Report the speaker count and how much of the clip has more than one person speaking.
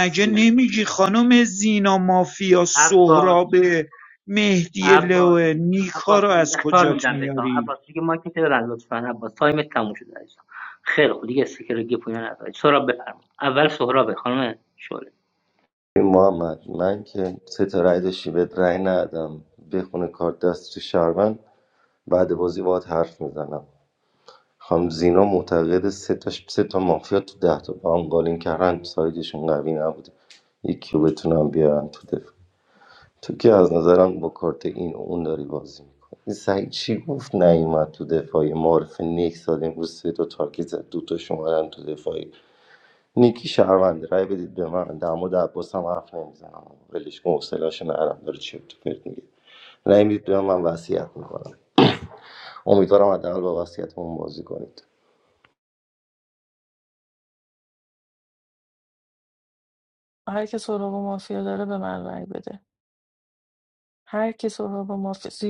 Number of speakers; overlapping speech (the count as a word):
four, about 5%